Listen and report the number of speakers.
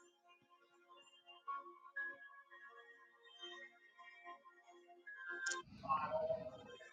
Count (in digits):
0